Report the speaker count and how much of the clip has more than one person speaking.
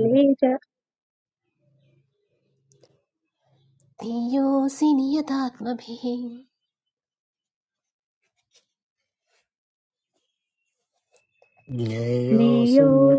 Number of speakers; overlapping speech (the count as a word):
three, about 5%